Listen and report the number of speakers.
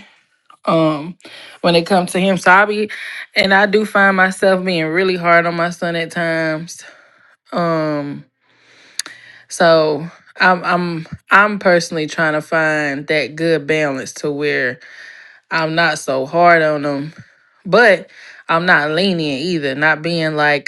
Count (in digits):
1